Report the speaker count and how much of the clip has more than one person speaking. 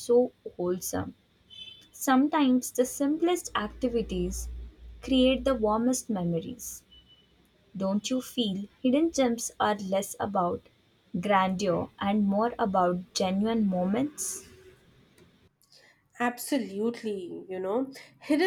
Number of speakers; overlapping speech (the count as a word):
two, no overlap